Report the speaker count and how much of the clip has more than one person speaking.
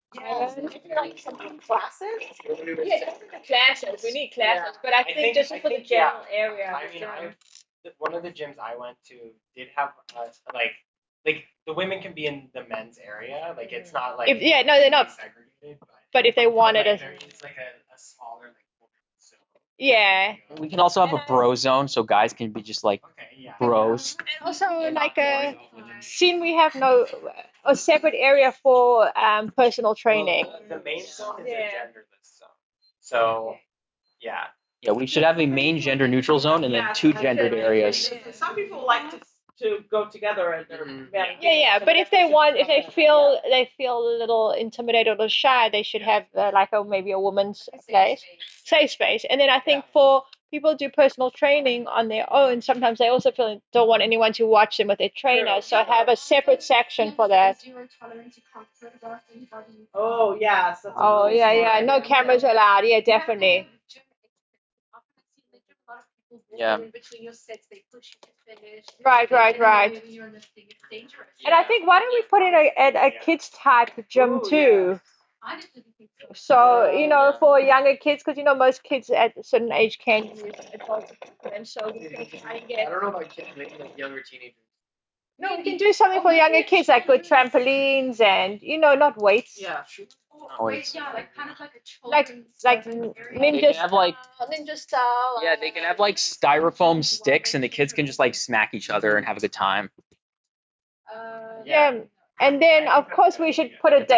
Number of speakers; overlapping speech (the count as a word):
six, about 44%